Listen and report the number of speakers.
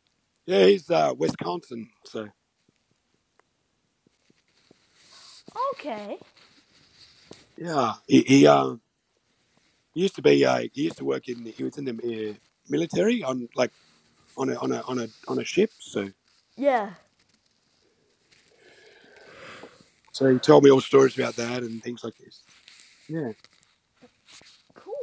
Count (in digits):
2